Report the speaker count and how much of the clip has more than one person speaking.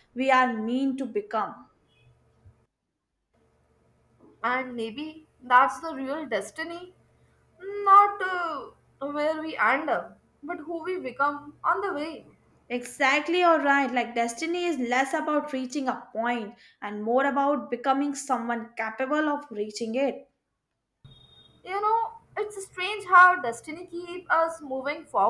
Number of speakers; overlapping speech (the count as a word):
two, no overlap